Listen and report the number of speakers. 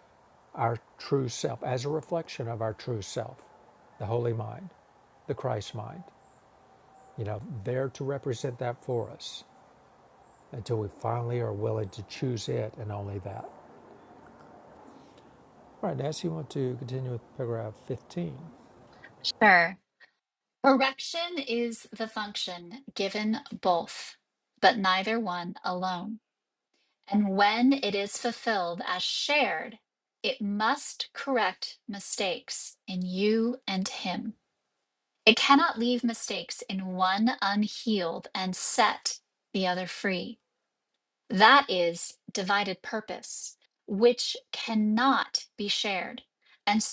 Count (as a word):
two